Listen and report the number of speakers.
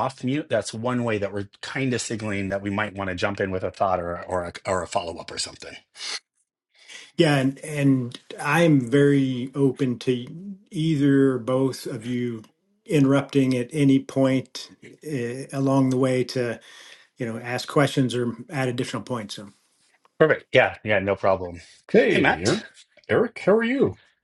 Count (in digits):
3